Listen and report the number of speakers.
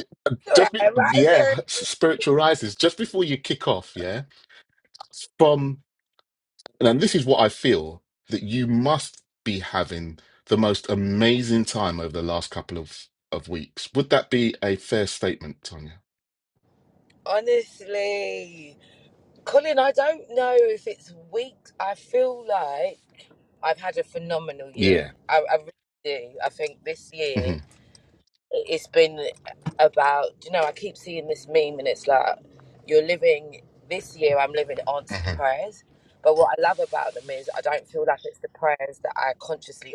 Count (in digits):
2